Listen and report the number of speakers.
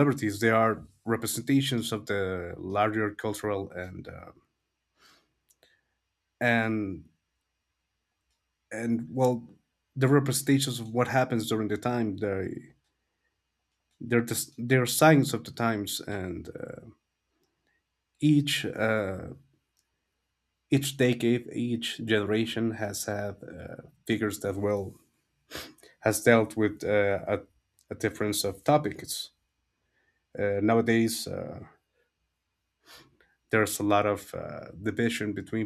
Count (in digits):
1